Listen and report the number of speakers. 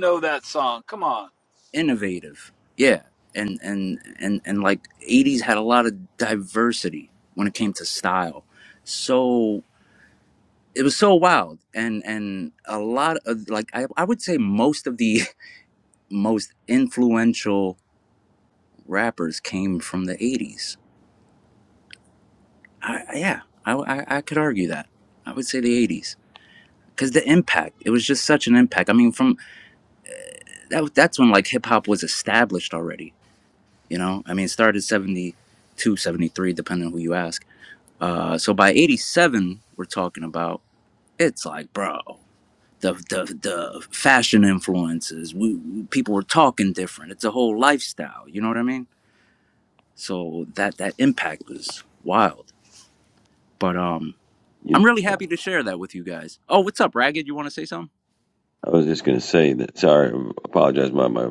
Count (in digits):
3